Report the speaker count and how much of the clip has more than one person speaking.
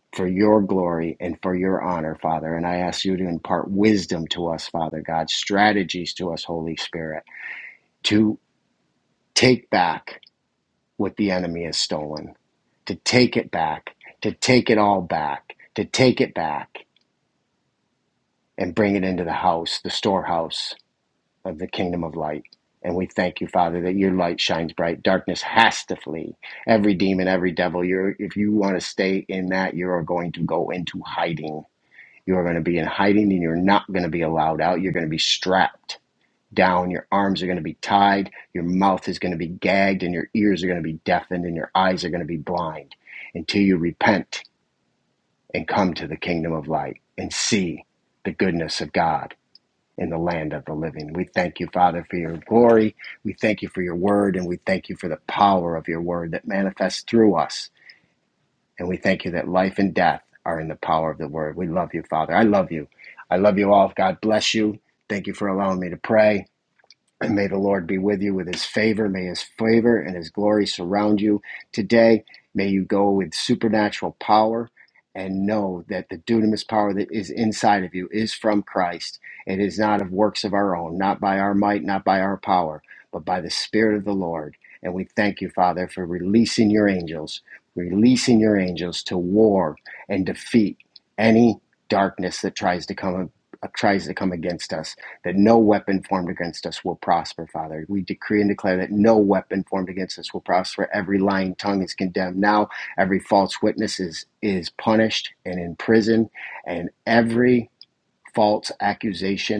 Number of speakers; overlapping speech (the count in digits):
1, no overlap